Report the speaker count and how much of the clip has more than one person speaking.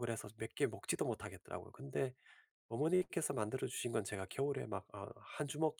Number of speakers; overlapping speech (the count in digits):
1, no overlap